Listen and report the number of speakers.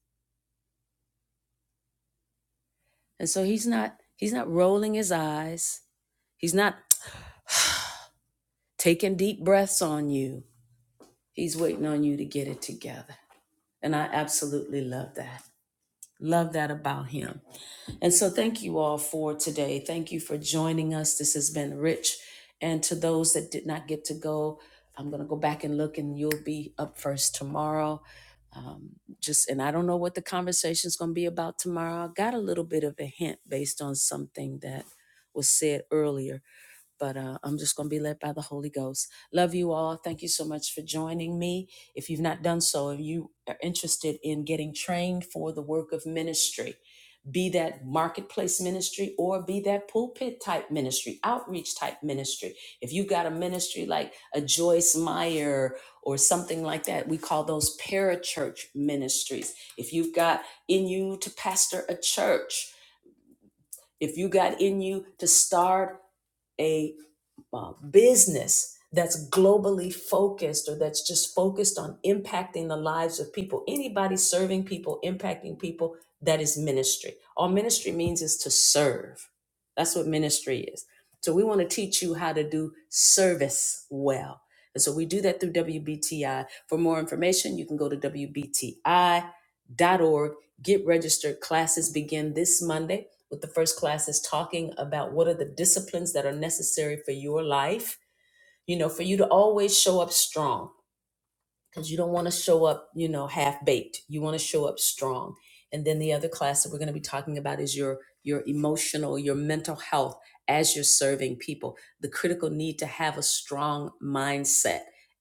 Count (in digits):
1